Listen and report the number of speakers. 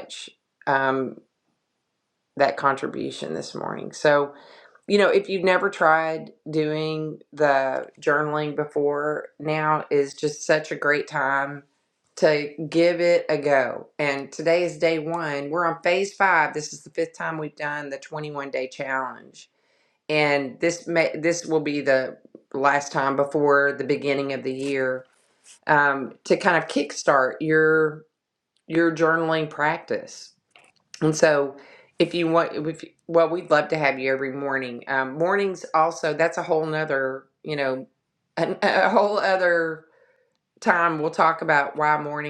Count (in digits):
1